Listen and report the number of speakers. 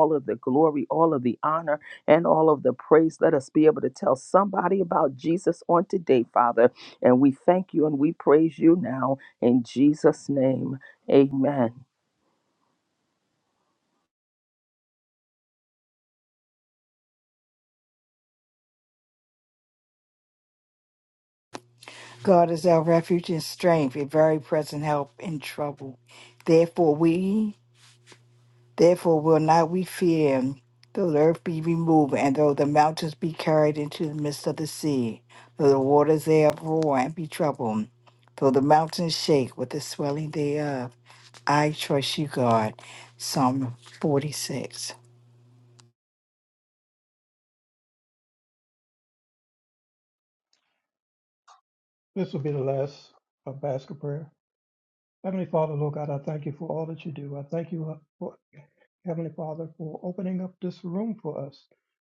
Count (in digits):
3